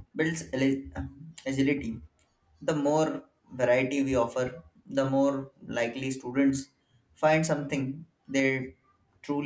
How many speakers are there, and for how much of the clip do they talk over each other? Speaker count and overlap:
one, no overlap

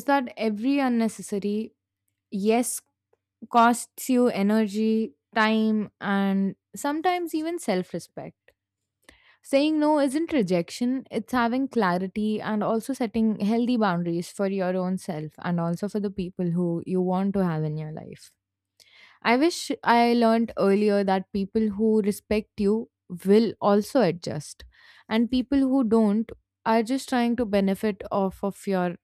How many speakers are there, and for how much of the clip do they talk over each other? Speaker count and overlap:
one, no overlap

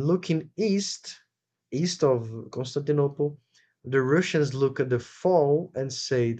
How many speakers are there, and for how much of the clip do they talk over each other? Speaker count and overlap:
one, no overlap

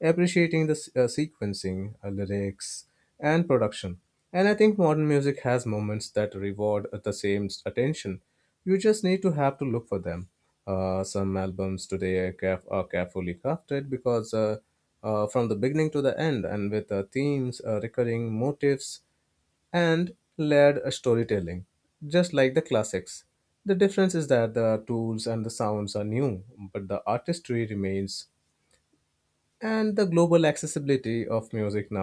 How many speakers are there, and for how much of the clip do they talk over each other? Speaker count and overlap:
one, no overlap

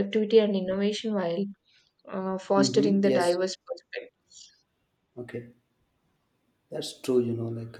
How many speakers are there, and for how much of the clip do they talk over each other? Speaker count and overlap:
two, about 11%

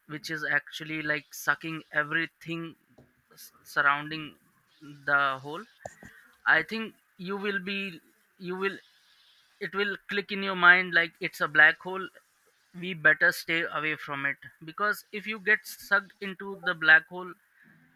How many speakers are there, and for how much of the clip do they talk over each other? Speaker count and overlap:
one, no overlap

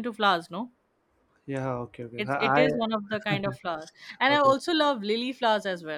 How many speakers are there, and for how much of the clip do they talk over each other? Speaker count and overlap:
two, about 15%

